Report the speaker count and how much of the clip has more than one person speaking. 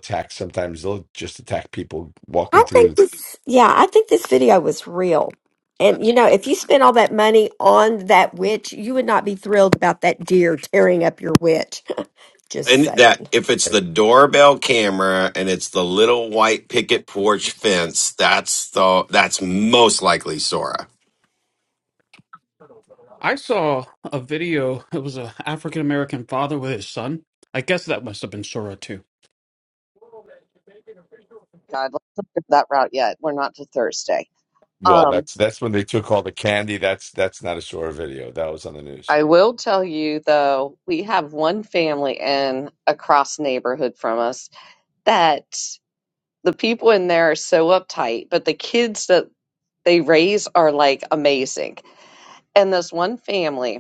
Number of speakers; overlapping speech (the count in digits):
5, about 3%